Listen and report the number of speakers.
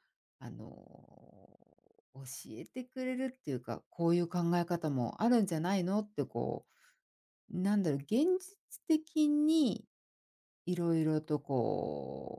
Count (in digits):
1